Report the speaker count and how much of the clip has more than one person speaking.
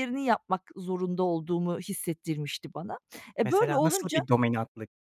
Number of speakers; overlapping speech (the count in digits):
2, about 16%